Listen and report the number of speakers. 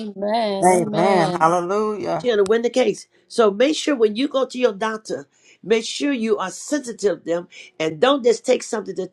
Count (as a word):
three